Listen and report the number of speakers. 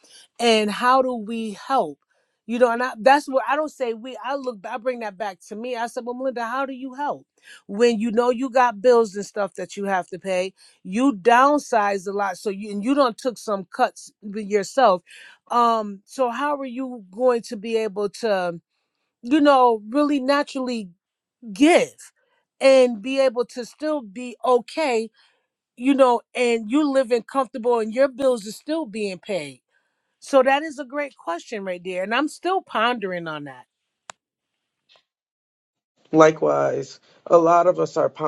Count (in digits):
2